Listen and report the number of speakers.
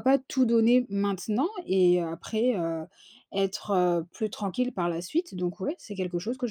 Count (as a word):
one